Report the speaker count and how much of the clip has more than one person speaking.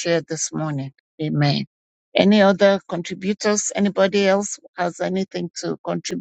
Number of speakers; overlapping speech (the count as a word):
one, no overlap